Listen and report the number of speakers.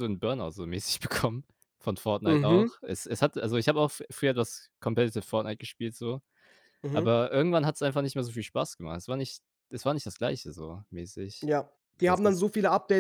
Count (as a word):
two